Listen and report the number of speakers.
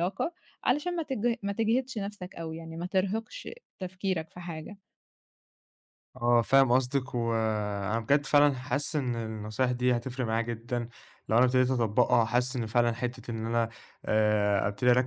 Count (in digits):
2